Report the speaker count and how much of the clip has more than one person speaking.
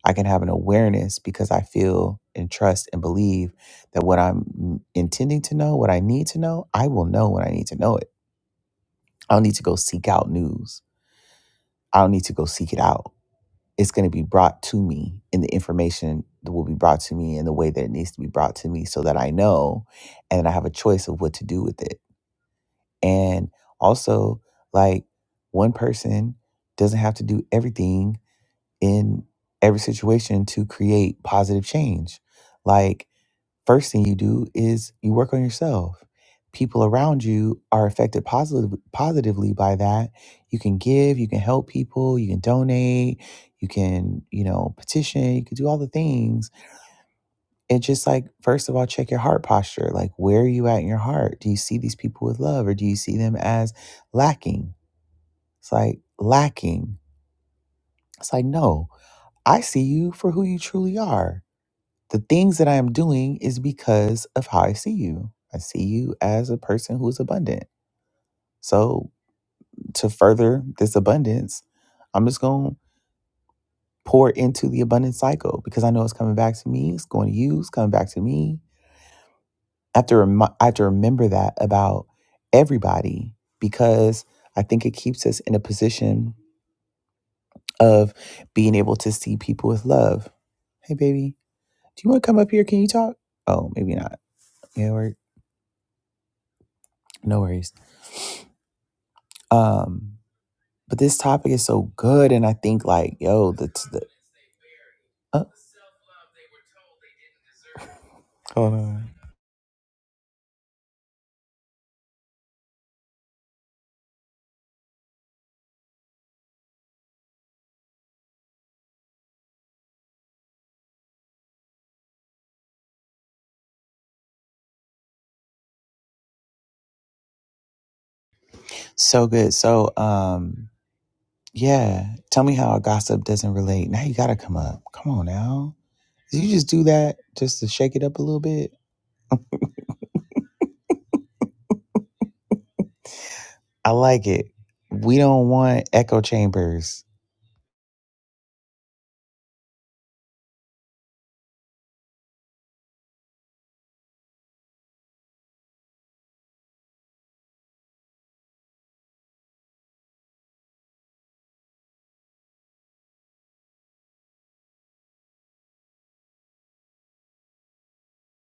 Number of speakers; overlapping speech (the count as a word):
one, no overlap